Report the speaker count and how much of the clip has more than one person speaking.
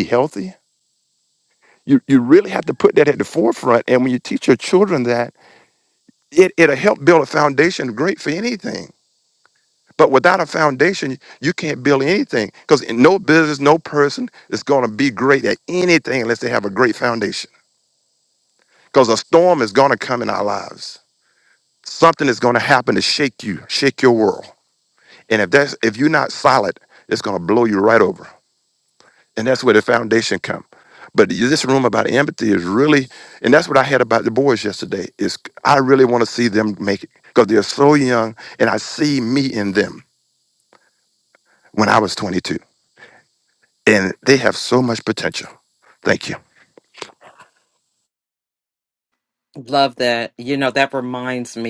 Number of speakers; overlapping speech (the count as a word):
two, no overlap